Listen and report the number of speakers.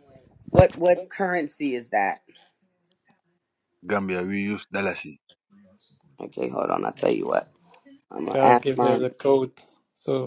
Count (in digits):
3